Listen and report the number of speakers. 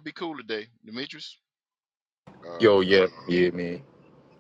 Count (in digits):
2